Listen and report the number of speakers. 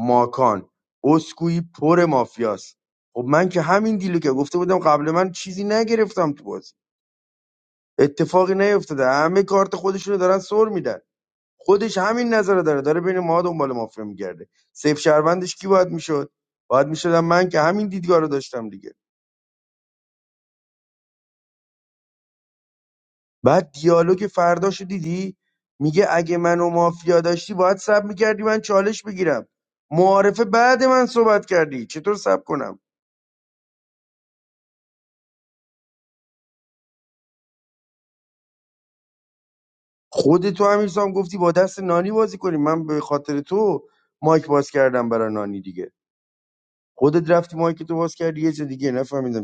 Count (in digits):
1